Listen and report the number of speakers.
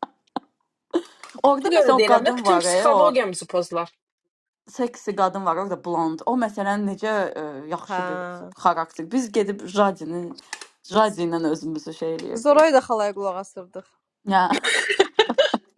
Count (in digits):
3